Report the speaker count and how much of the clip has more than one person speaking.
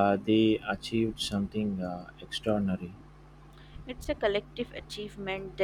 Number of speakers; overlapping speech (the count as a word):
two, no overlap